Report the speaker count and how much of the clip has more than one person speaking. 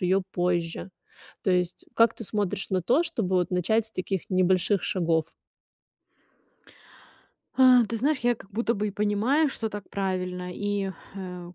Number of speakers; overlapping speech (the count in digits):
2, no overlap